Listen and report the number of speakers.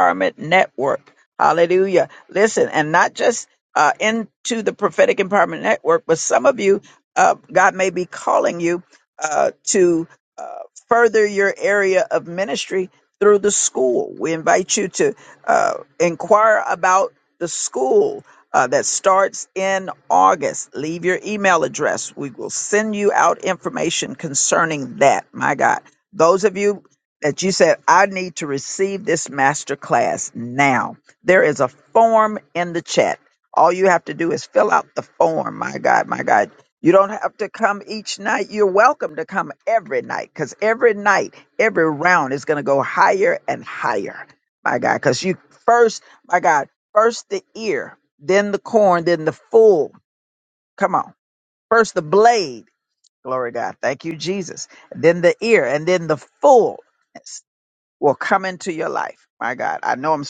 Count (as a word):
one